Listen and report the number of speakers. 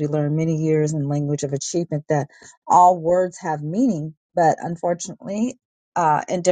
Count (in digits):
1